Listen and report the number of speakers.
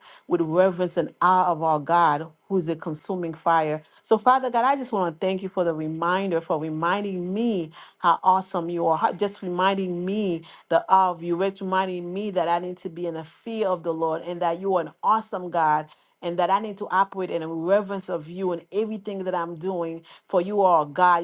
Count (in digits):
1